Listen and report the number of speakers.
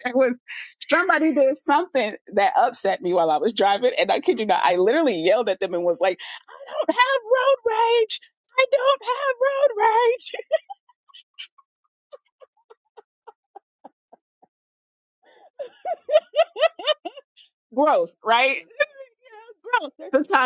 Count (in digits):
1